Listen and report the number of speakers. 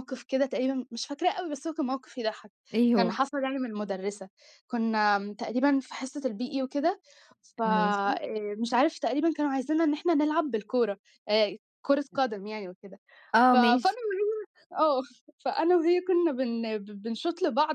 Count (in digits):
2